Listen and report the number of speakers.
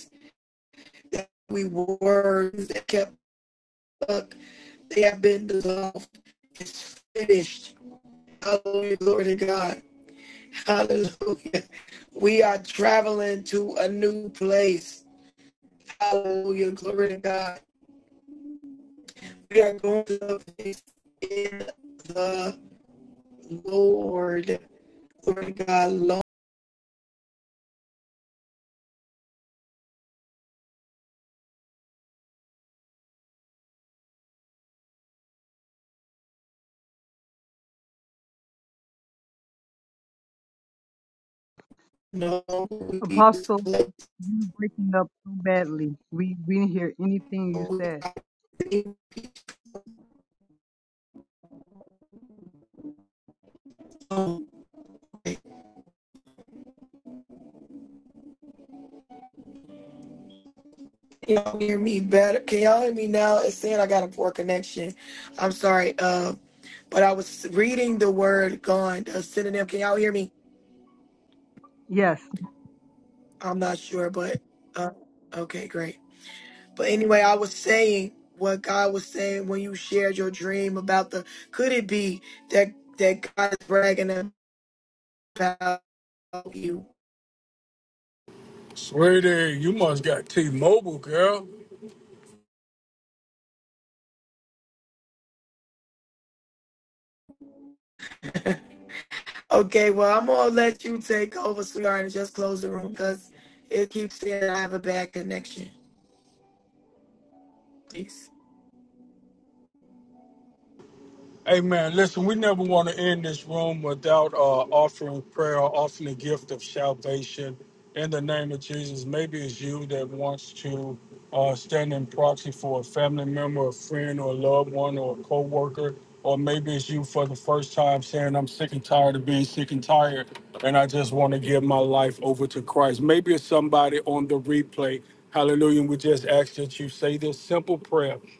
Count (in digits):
3